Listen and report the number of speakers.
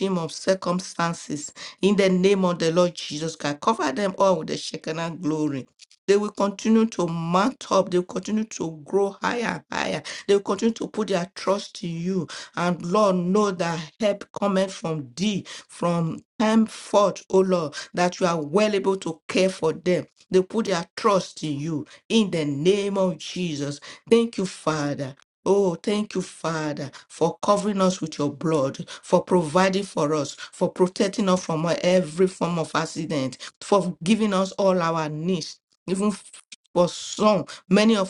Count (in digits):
1